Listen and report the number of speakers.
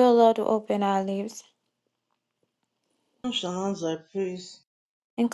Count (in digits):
2